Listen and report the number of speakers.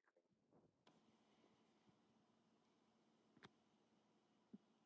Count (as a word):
zero